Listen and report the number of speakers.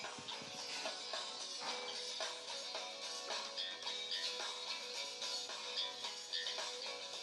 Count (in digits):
0